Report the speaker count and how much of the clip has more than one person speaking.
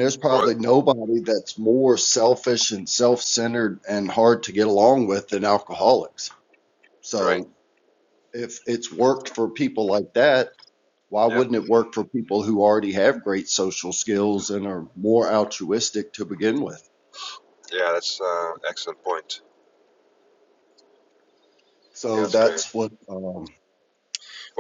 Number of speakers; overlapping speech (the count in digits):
2, about 4%